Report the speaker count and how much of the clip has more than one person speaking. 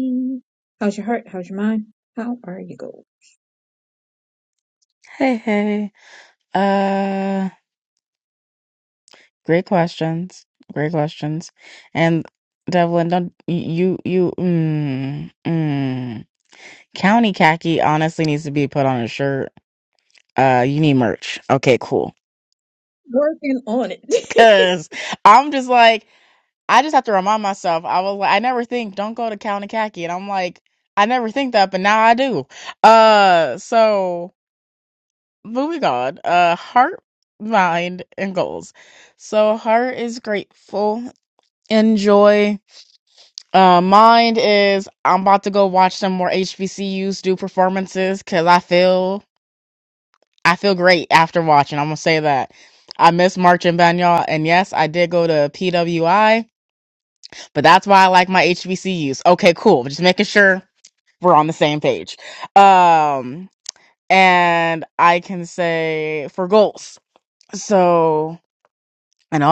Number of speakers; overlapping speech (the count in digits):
2, no overlap